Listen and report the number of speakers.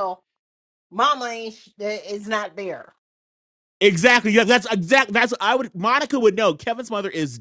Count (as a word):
two